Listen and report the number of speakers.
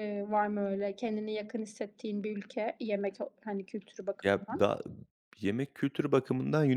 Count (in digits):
2